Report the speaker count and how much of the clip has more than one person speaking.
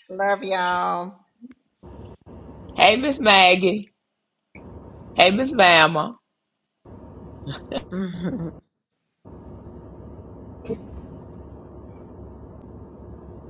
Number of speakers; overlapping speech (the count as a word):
two, no overlap